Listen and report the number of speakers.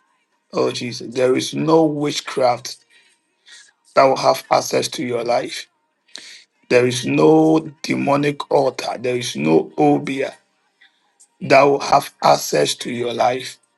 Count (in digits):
1